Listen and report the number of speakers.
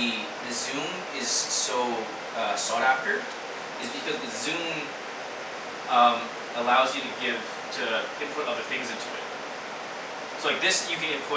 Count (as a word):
one